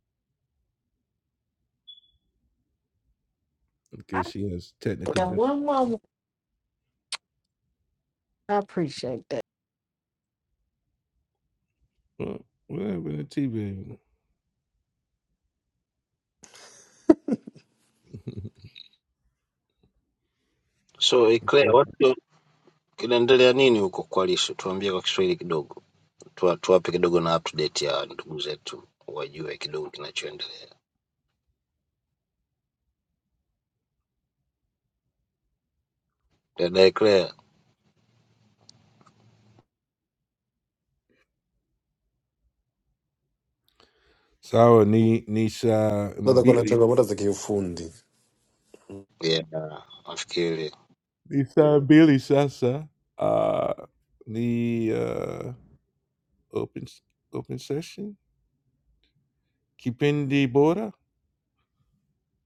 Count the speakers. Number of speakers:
four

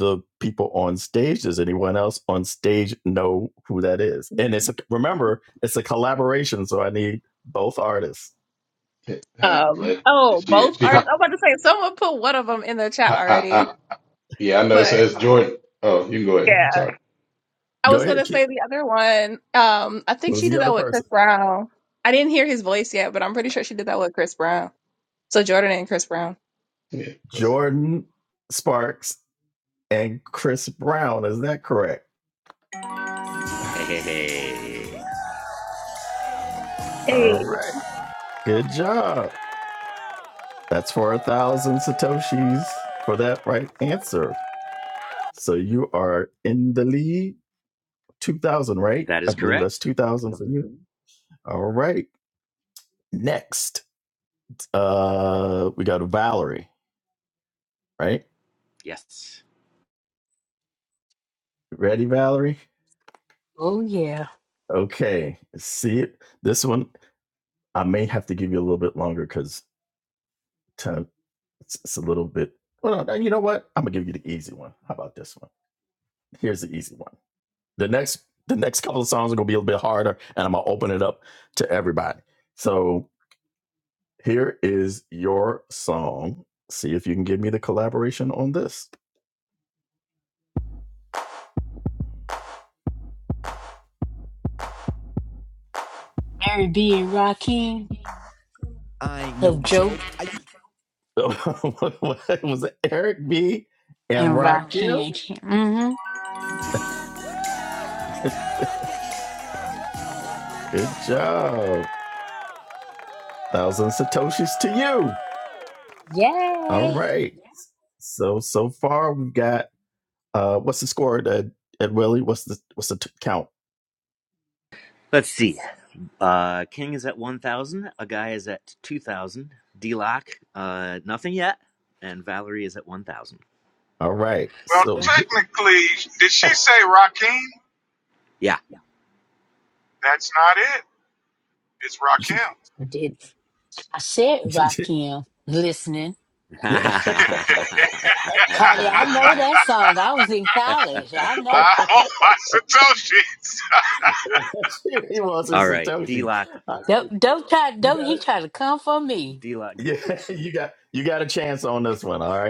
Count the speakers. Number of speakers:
six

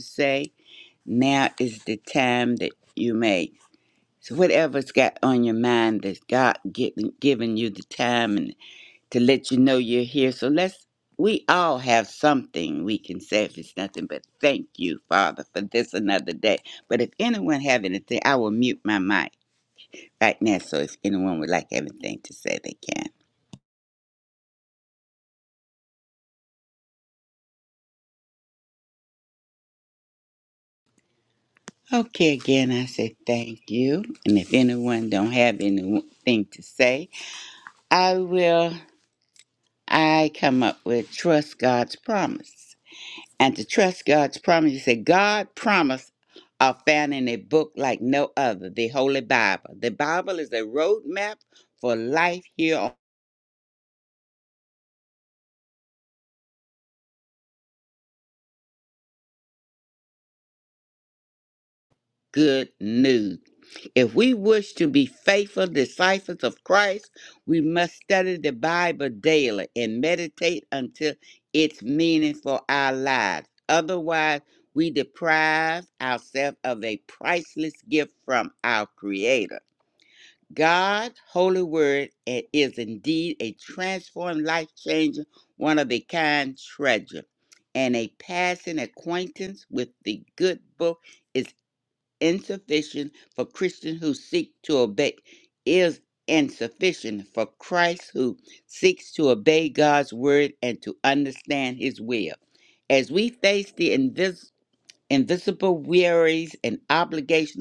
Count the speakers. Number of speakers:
one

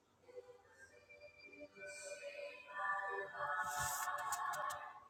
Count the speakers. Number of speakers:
zero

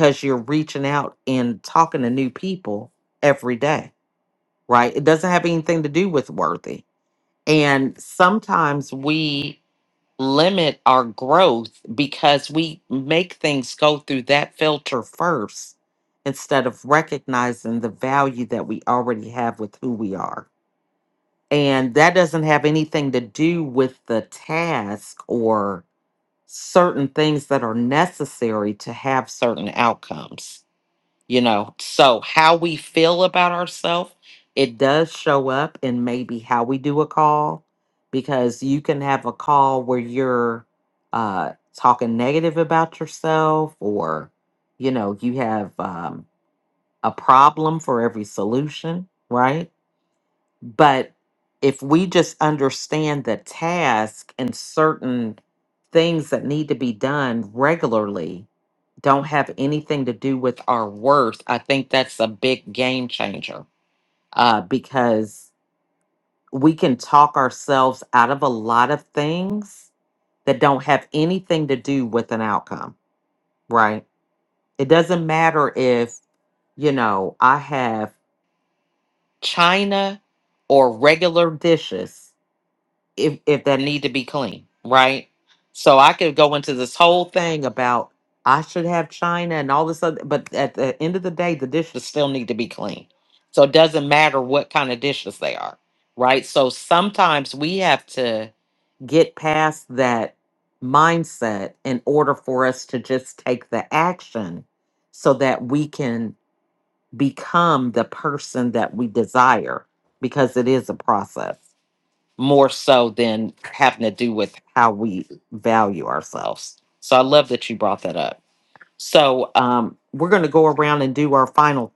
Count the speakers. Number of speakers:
one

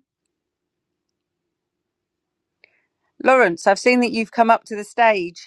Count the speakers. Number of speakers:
one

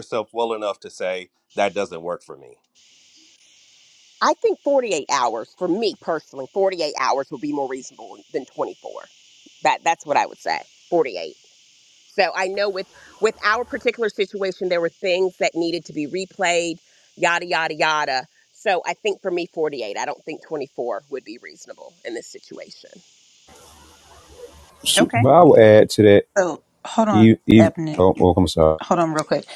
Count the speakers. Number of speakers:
four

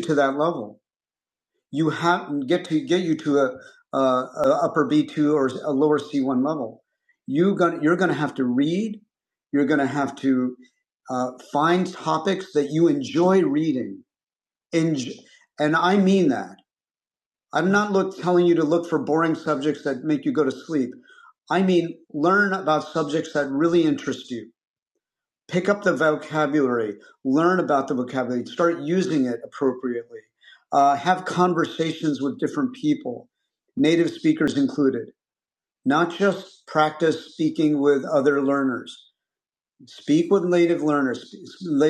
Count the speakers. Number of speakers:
one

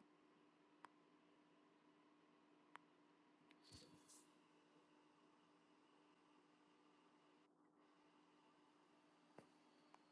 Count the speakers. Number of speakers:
zero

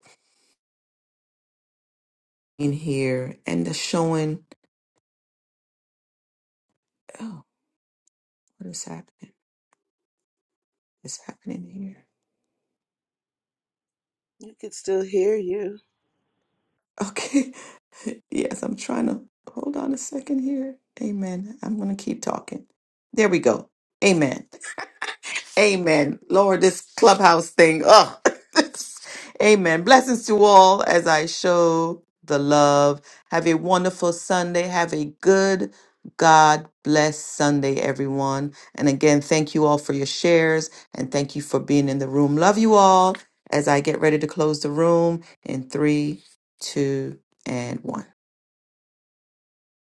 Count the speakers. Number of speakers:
two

